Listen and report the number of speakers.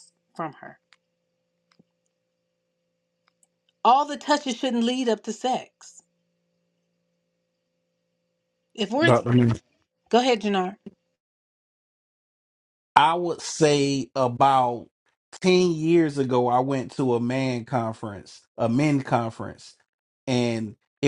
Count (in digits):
2